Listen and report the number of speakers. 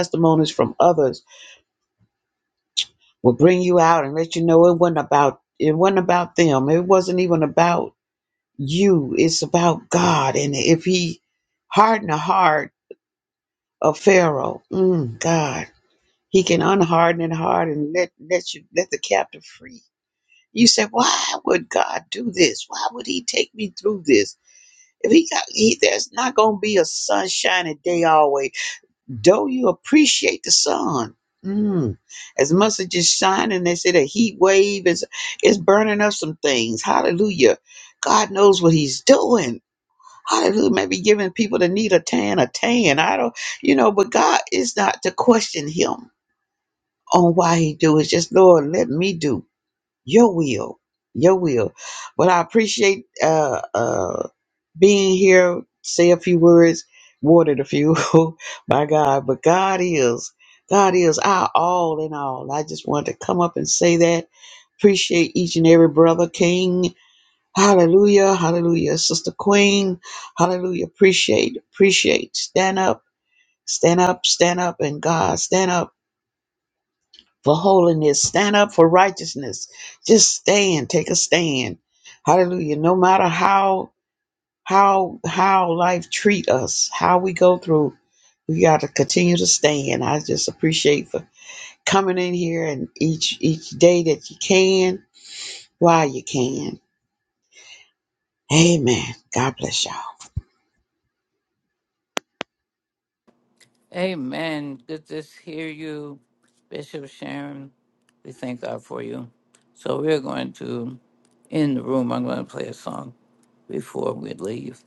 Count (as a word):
two